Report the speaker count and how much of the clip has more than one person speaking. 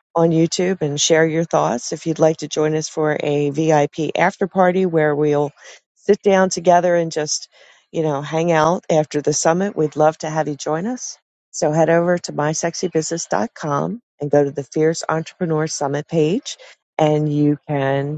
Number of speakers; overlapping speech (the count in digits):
1, no overlap